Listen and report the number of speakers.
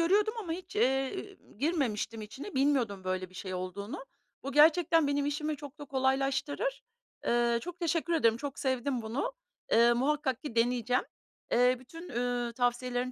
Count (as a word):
one